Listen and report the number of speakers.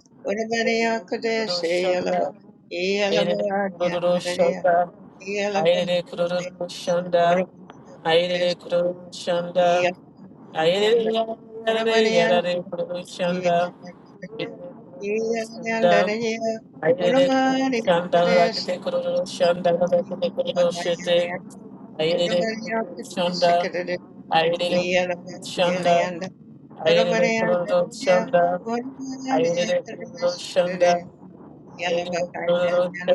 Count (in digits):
2